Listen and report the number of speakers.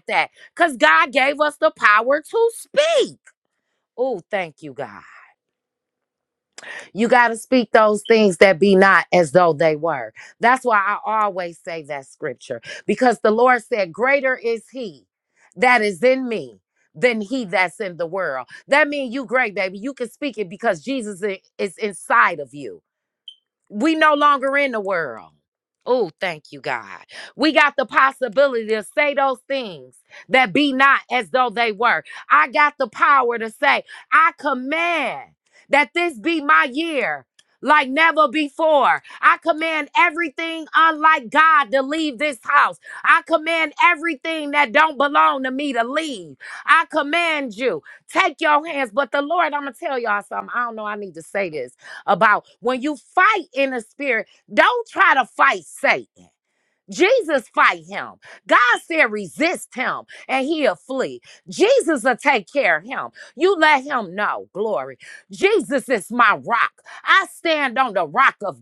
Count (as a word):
one